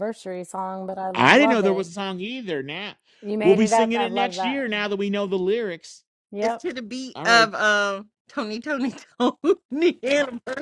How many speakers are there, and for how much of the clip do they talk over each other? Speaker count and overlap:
three, about 23%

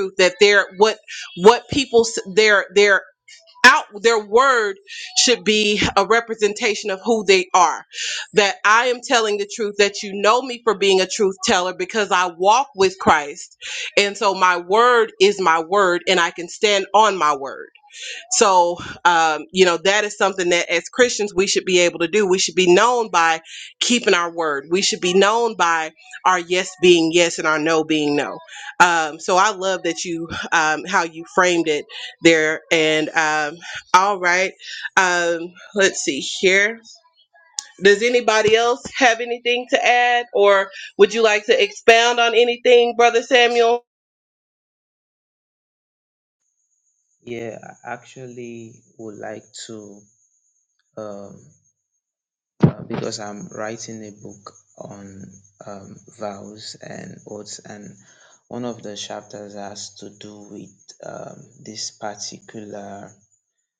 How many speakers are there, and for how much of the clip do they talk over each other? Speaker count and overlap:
two, no overlap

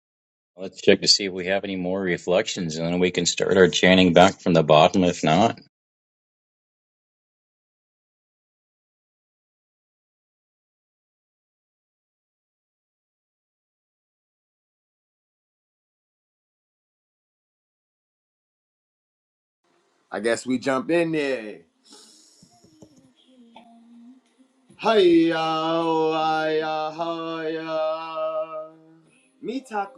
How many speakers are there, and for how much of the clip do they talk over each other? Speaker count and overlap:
two, no overlap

